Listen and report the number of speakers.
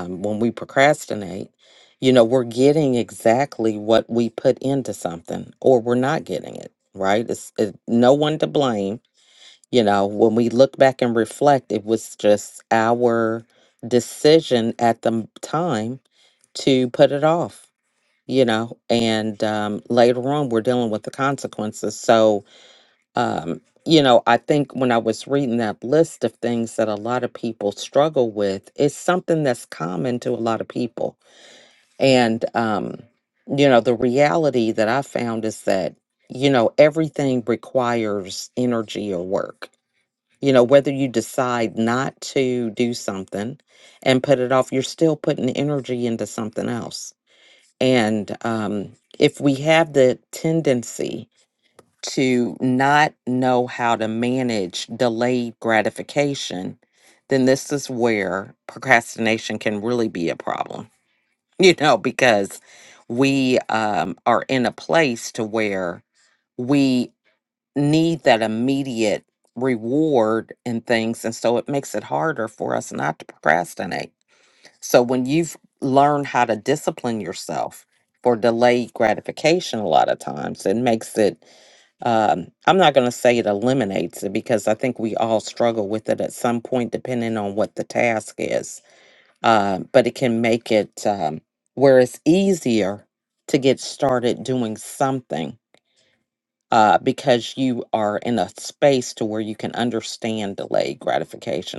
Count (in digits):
1